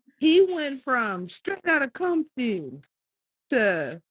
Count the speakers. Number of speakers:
1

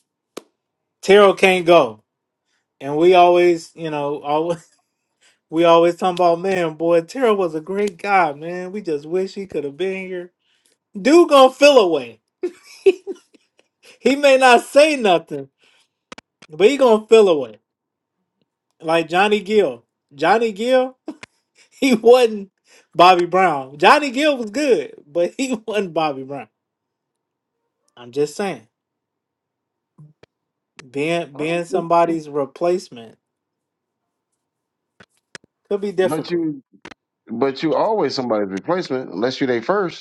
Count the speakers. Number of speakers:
2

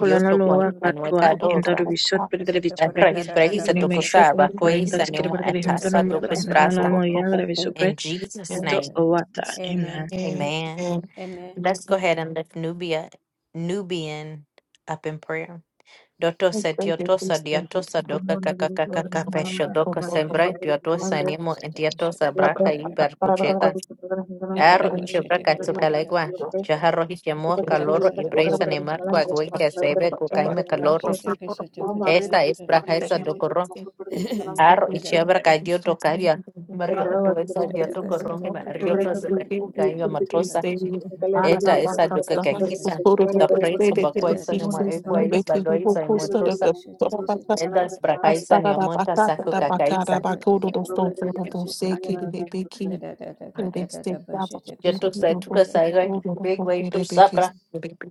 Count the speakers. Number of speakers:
4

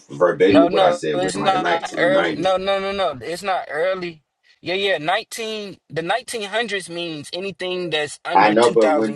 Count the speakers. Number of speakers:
2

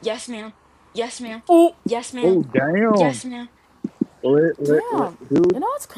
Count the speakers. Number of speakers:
3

